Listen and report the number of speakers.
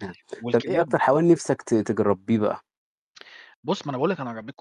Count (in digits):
2